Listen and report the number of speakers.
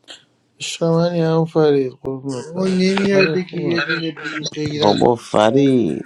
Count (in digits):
3